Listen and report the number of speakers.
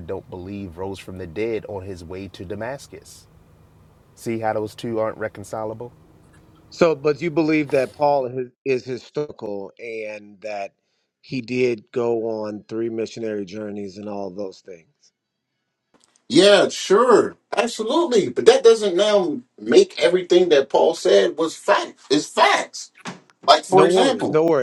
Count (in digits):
3